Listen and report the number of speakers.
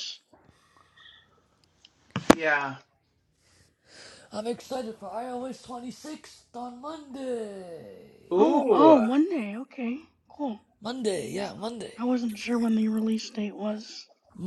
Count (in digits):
3